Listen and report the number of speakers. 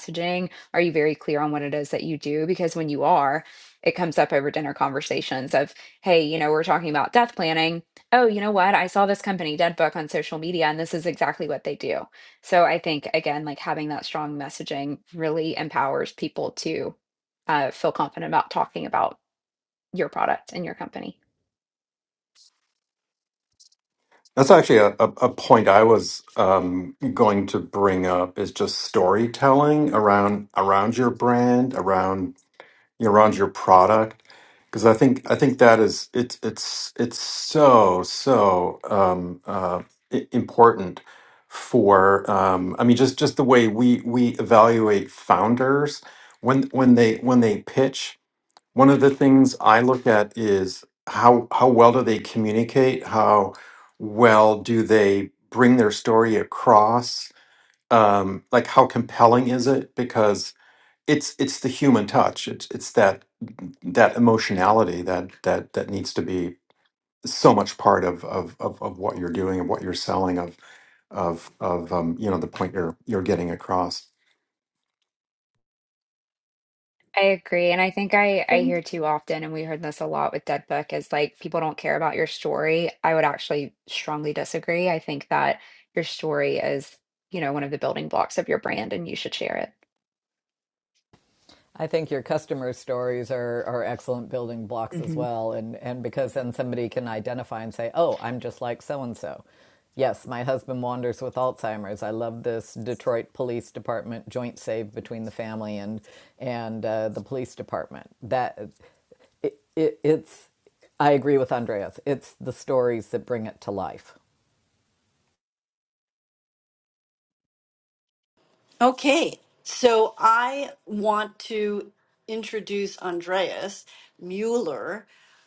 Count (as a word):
four